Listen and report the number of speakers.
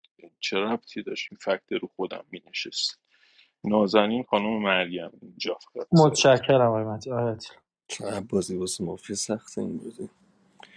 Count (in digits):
3